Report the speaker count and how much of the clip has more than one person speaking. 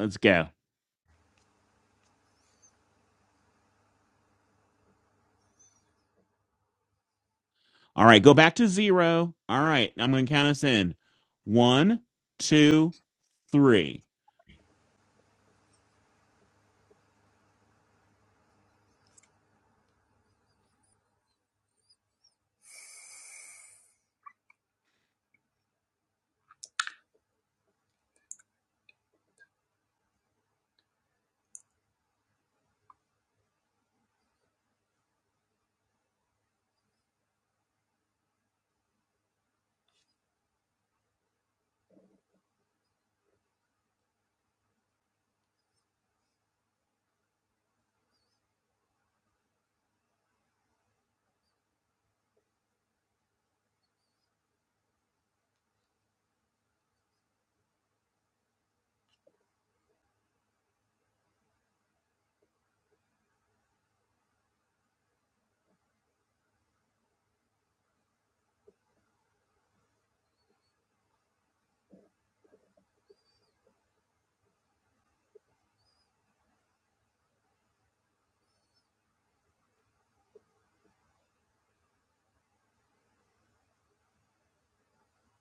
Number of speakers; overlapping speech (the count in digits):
1, no overlap